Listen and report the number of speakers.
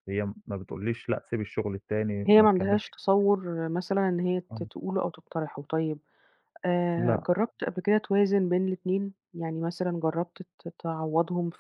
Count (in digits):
2